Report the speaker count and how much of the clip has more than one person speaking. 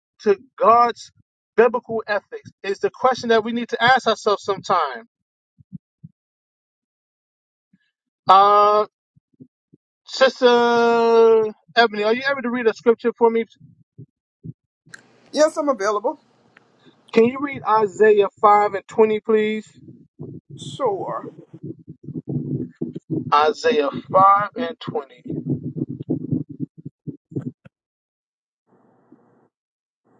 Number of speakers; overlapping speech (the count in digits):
2, no overlap